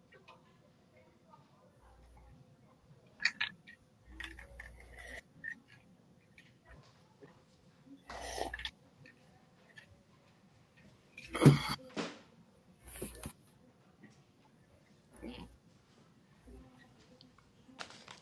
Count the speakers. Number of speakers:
zero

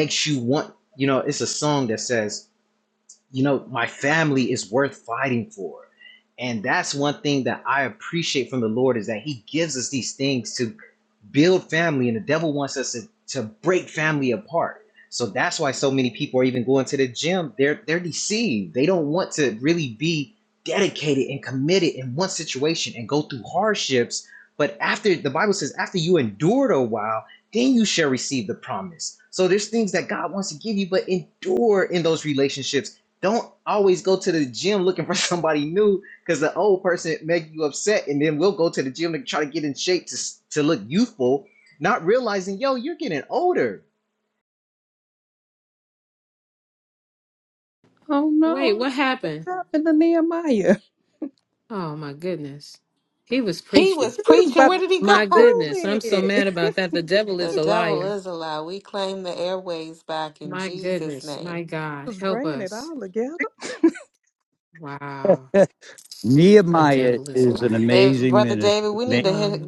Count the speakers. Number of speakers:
five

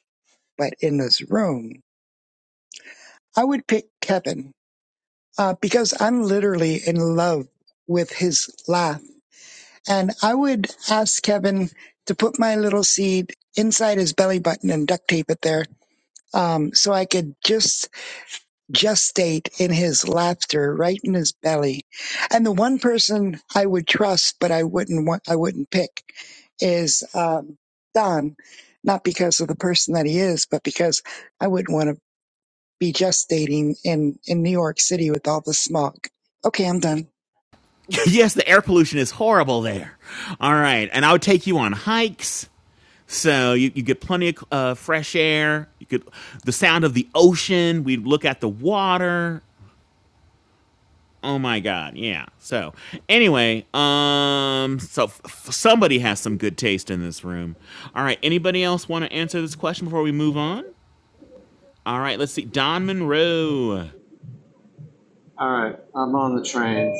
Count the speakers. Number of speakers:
three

